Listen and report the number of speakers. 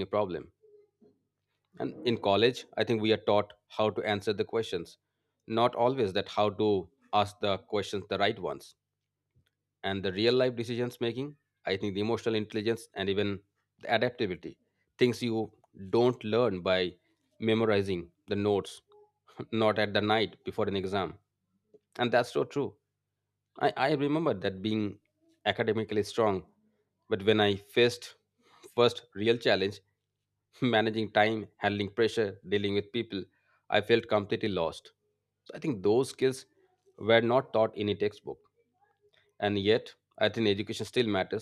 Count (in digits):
1